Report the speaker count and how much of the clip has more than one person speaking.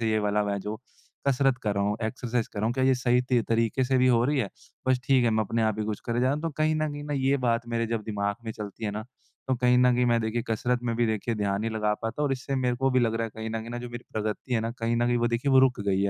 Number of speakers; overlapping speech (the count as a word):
one, no overlap